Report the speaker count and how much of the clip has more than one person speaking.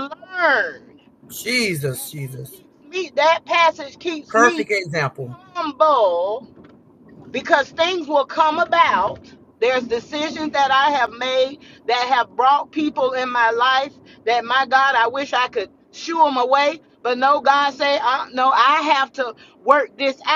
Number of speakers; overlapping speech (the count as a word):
two, about 2%